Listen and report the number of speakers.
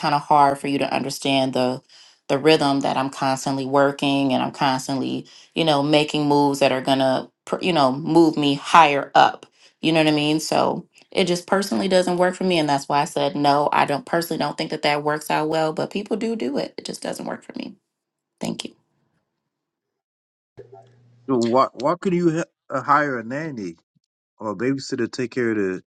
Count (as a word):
two